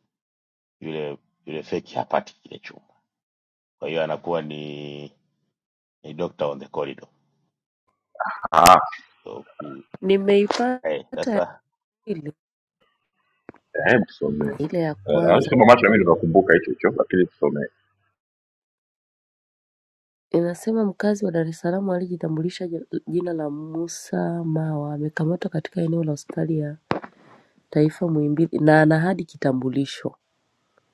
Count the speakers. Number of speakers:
three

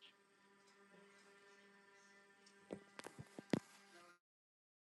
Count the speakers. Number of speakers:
zero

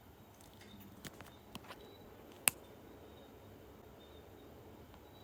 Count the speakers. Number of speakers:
zero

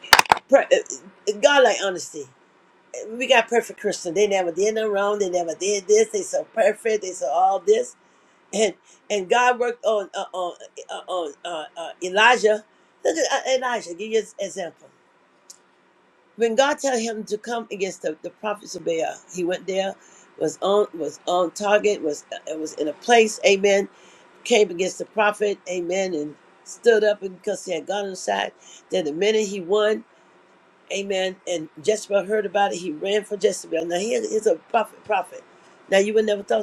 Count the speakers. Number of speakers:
one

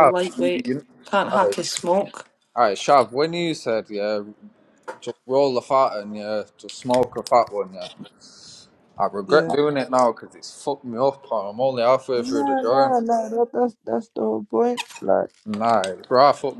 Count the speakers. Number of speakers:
three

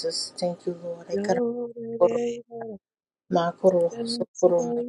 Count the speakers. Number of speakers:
two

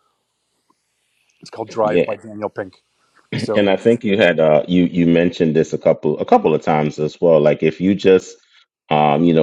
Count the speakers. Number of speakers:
two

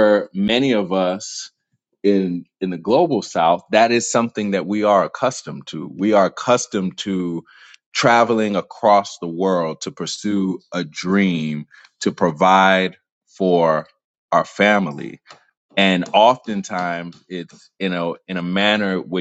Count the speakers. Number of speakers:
one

